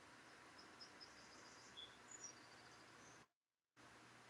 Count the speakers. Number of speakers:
0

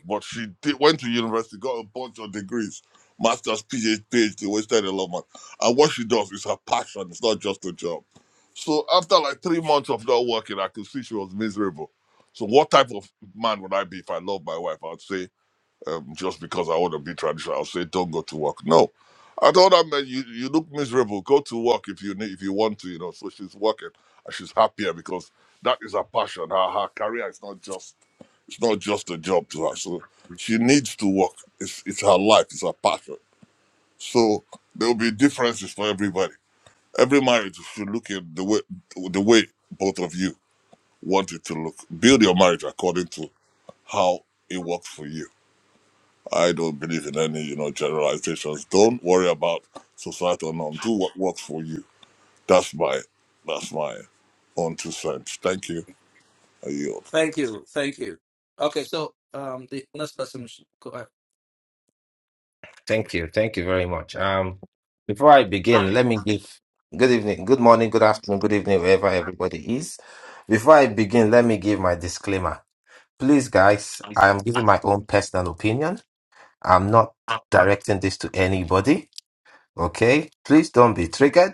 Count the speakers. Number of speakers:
3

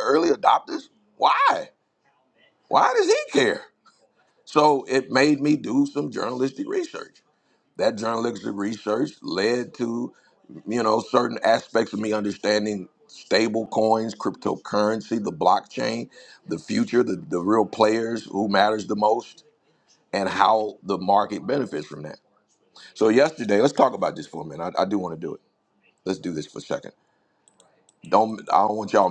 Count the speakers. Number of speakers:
1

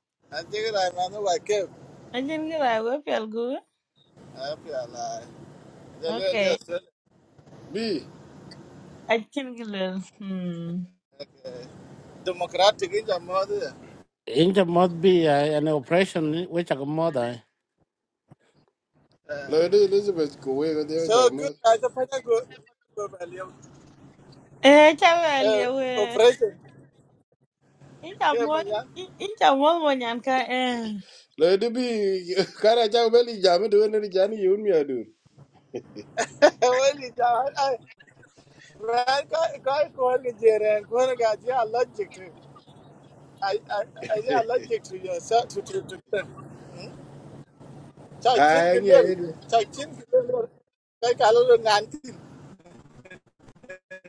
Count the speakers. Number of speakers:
4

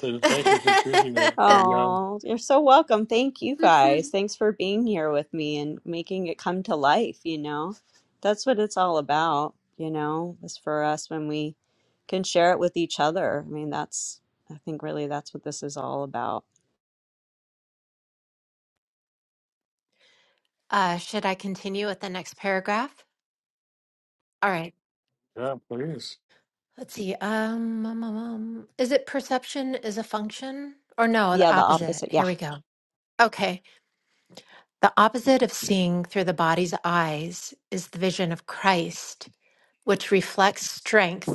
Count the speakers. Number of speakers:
3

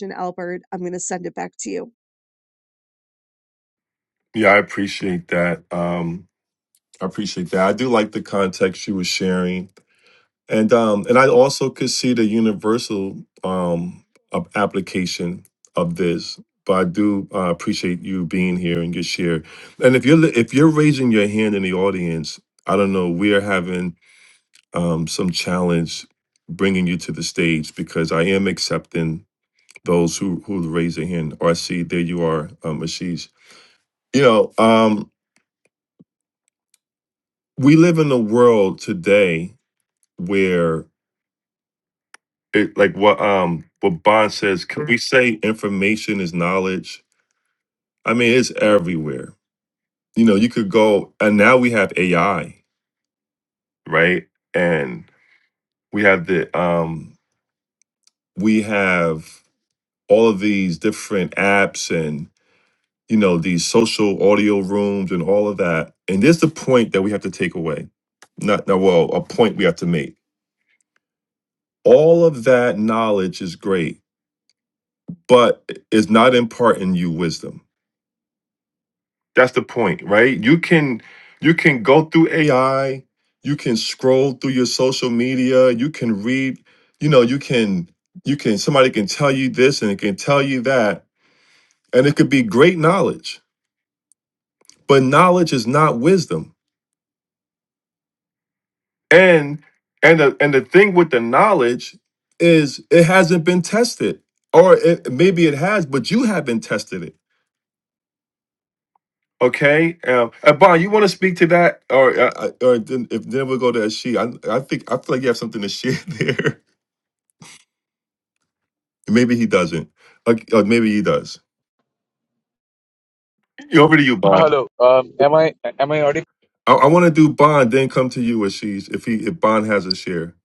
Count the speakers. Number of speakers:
3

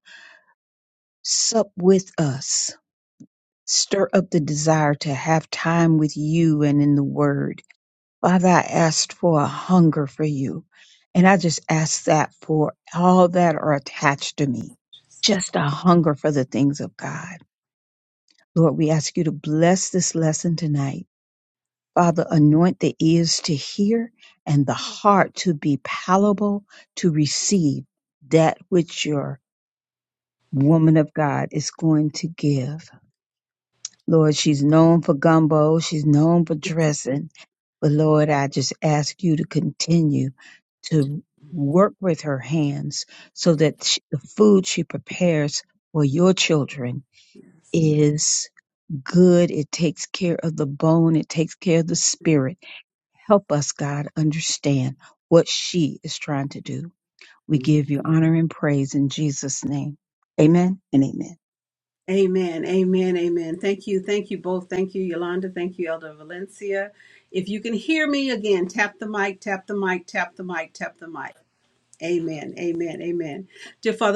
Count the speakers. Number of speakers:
2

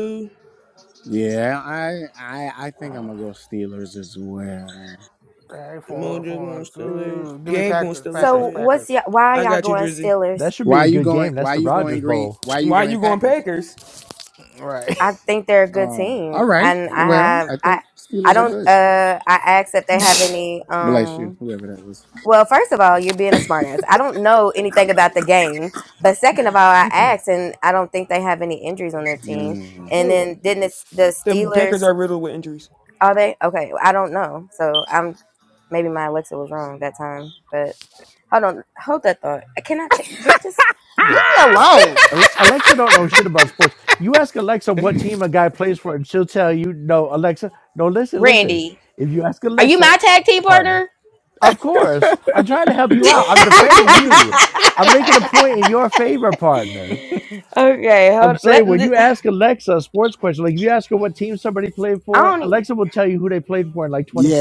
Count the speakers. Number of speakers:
5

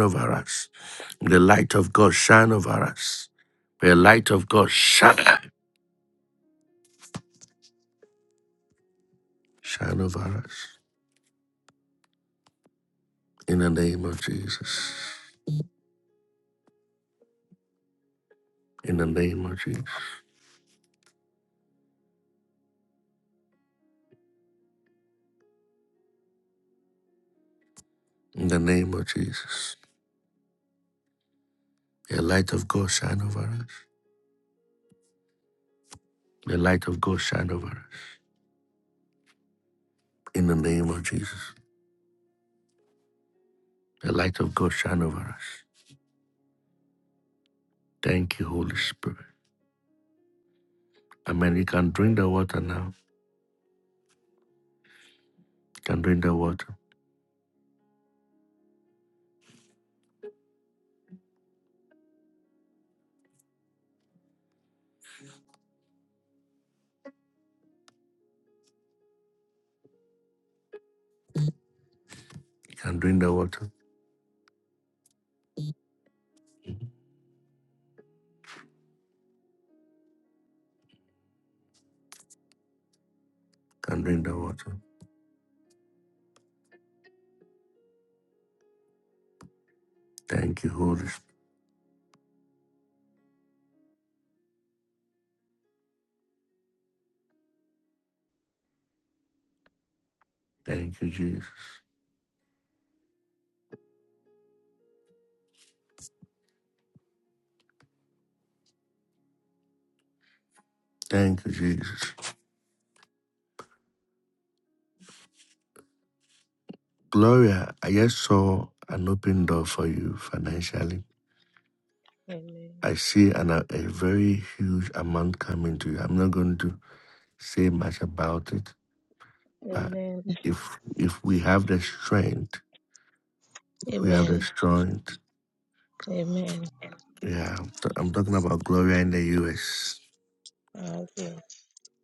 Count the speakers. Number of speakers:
2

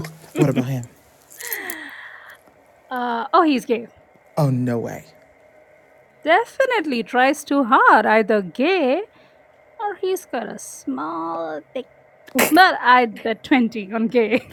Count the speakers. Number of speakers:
2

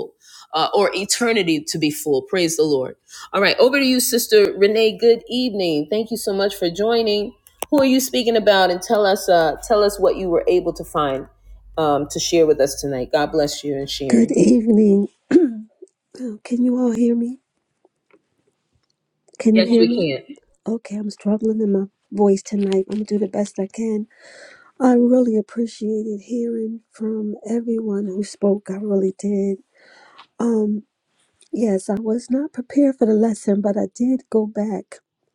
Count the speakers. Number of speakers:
2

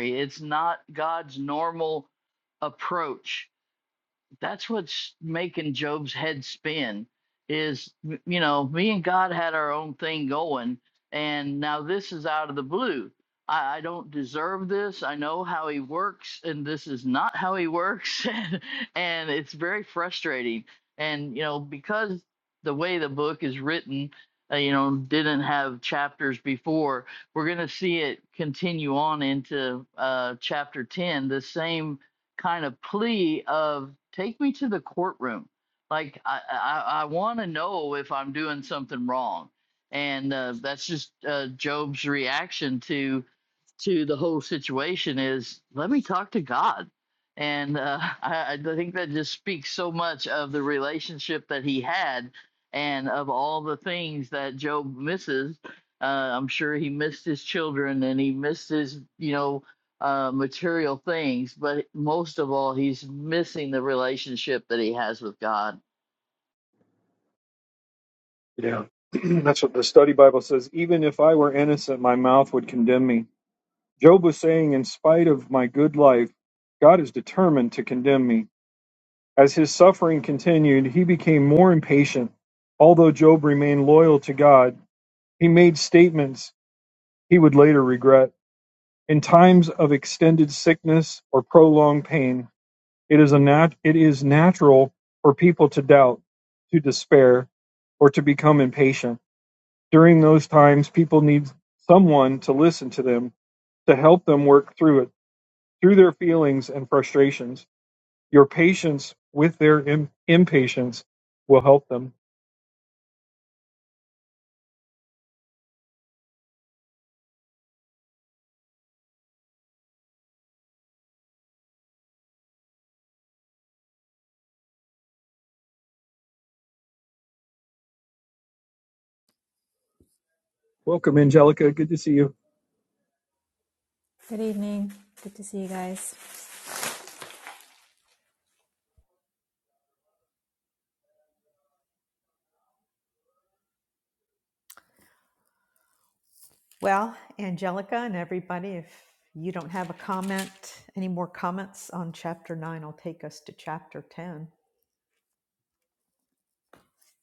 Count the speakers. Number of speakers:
4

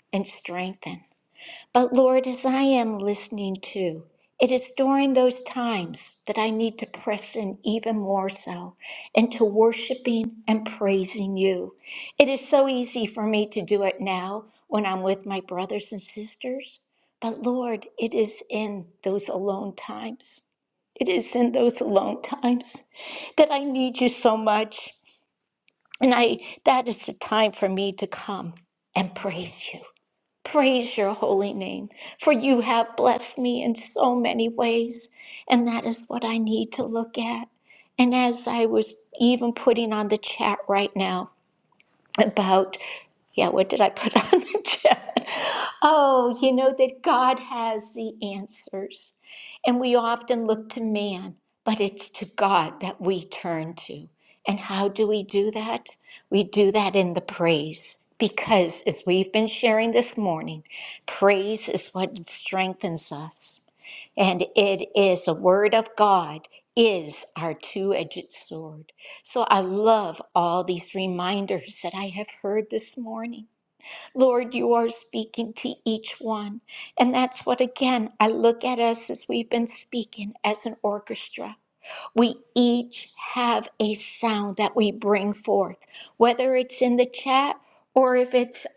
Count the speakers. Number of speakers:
1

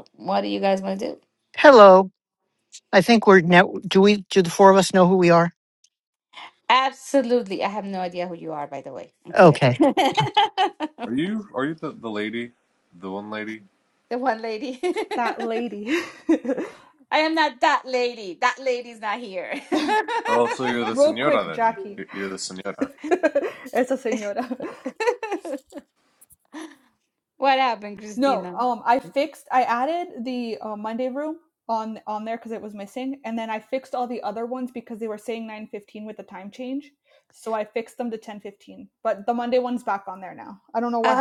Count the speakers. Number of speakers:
4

